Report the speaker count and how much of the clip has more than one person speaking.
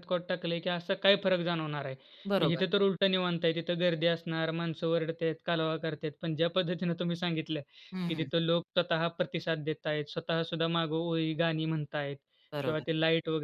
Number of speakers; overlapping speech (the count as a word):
two, about 4%